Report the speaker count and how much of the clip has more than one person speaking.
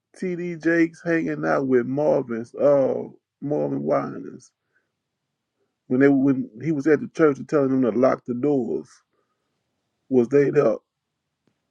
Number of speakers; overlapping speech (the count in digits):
1, no overlap